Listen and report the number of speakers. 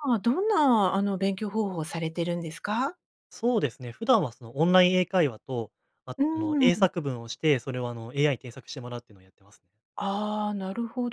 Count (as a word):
two